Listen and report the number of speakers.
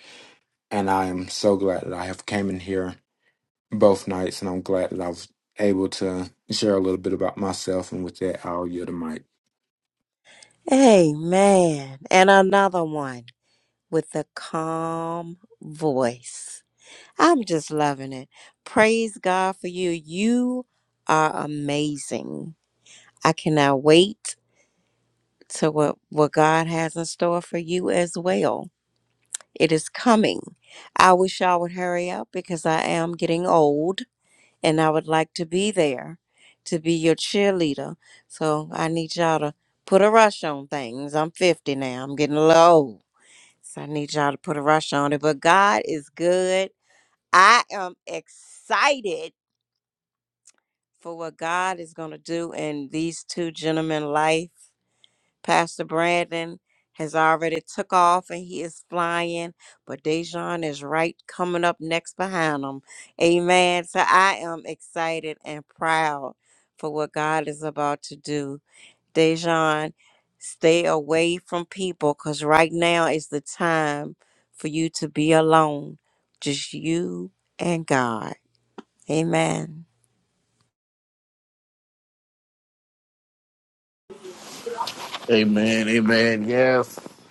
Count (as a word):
three